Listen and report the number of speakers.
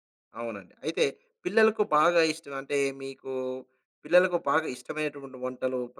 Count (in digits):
1